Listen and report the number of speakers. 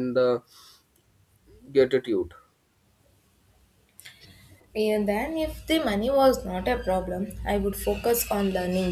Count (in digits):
2